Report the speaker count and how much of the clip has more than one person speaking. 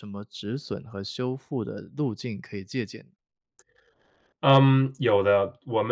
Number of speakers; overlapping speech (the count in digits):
2, no overlap